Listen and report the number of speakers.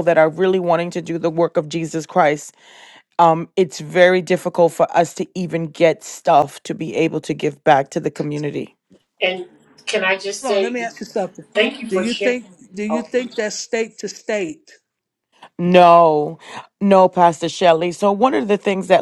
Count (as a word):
three